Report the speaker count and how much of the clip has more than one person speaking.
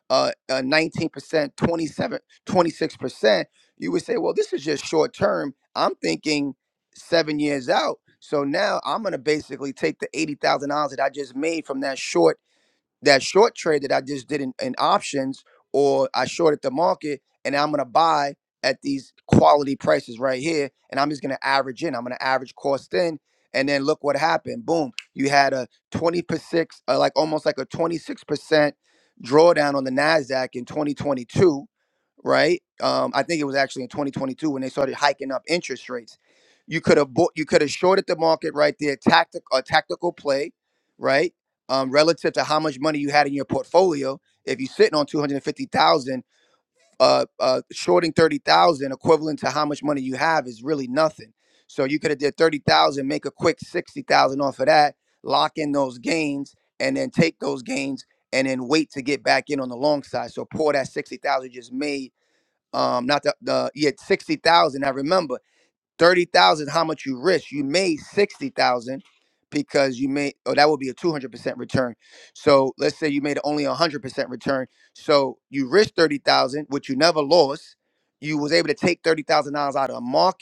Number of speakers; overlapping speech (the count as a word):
one, no overlap